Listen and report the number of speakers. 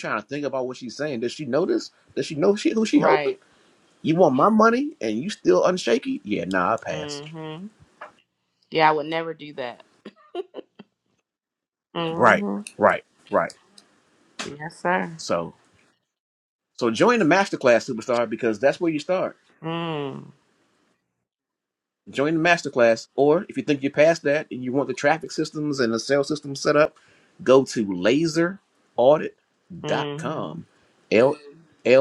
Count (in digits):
2